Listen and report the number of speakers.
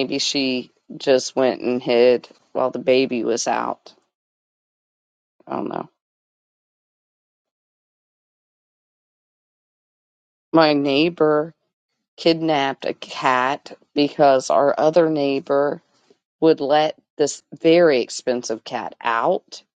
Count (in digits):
1